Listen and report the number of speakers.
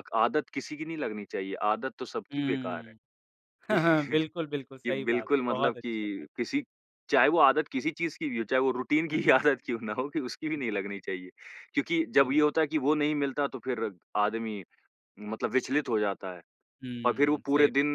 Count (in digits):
2